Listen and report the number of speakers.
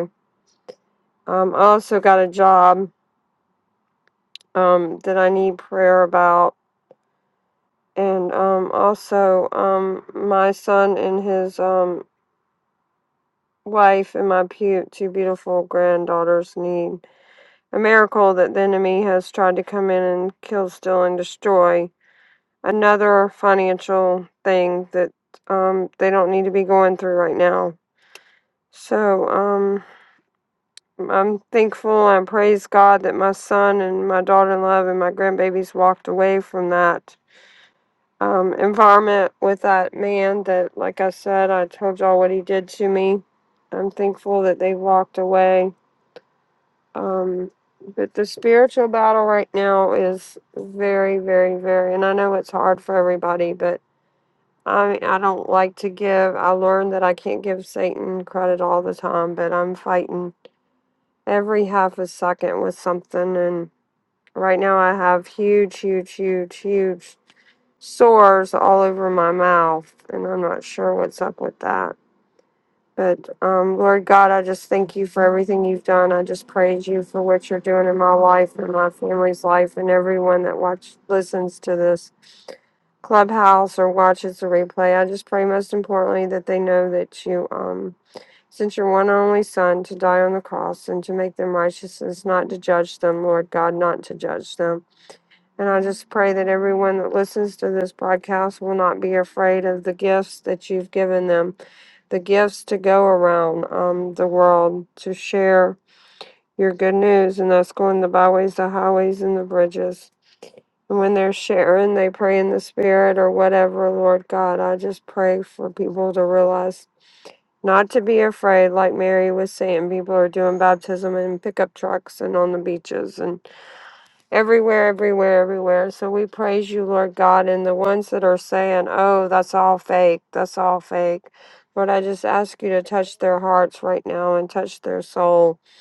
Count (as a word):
one